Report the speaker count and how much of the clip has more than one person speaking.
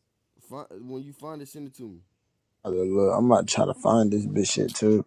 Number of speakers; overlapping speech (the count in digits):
2, no overlap